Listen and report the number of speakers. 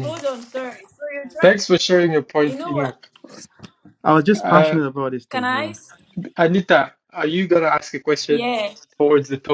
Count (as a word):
three